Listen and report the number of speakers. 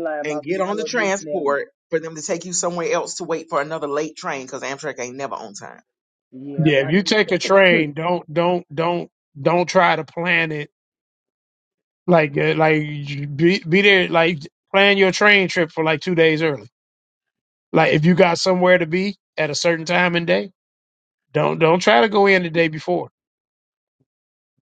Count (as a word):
three